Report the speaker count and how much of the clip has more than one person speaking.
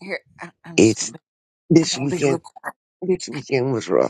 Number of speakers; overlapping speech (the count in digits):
2, about 22%